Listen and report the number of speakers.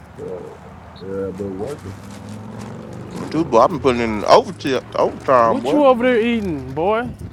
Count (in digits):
3